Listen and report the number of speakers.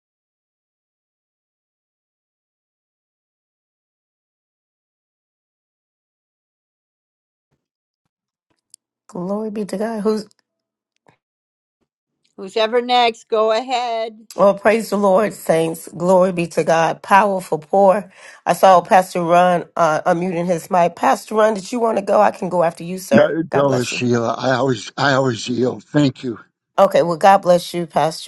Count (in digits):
3